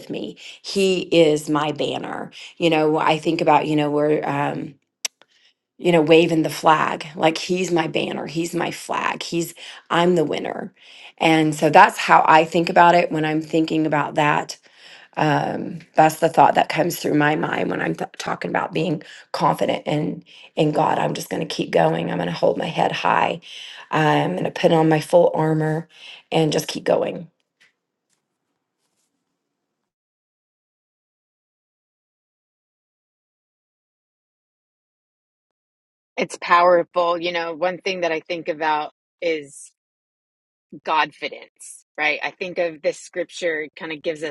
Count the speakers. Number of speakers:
2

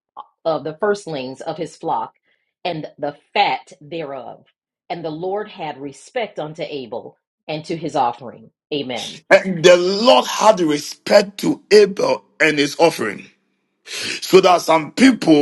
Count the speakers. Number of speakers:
2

